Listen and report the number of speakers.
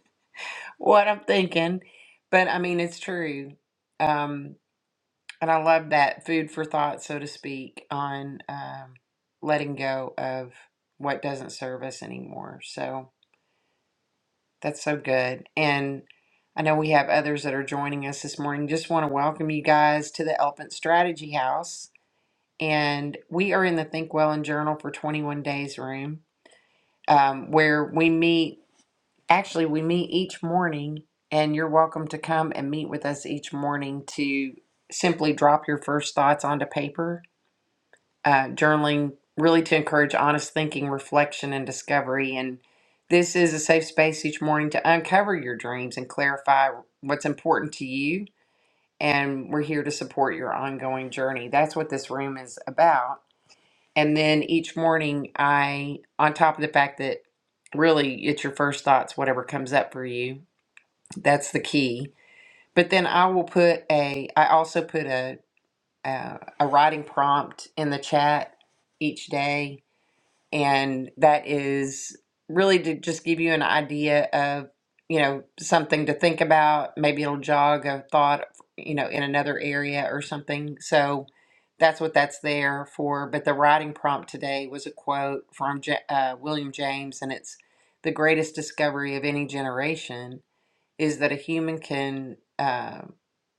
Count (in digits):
1